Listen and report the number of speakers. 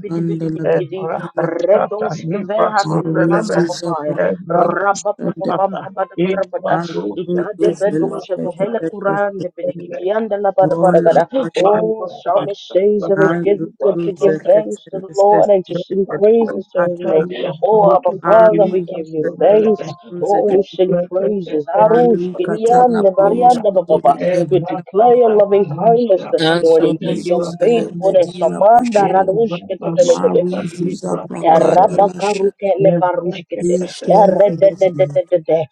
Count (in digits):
3